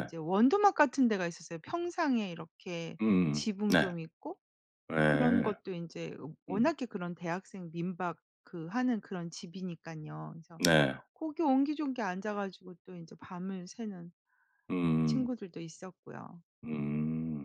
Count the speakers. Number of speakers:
2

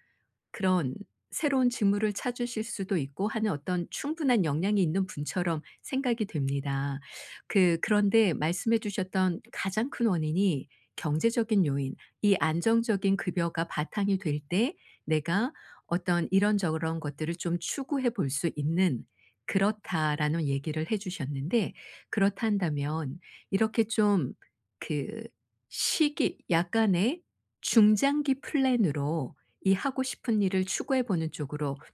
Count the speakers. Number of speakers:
1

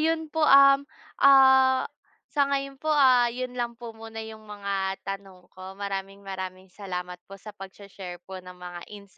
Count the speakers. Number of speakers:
1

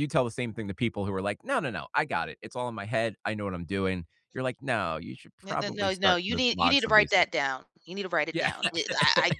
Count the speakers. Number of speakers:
2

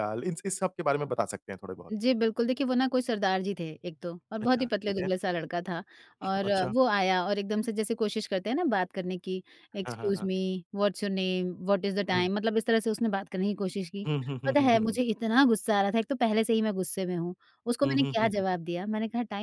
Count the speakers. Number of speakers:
2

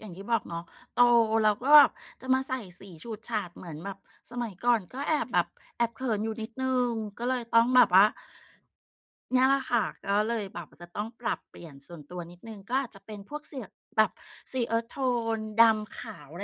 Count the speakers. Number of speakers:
1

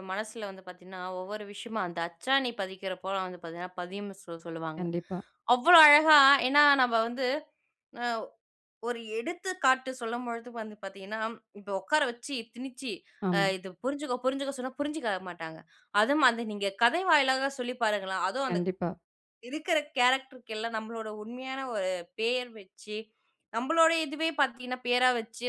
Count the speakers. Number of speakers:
2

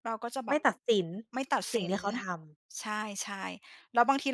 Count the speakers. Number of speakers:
2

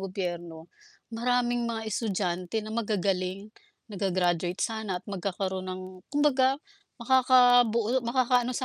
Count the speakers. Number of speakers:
1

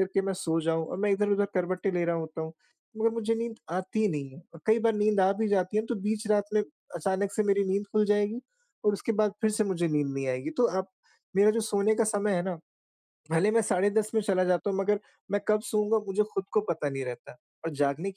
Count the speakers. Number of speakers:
1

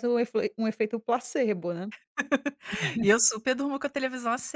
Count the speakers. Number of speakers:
2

